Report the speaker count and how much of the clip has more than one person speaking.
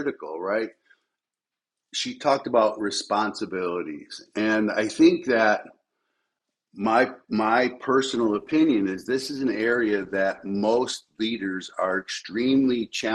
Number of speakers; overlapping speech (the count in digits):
1, no overlap